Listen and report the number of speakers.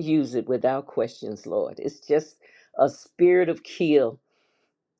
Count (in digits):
1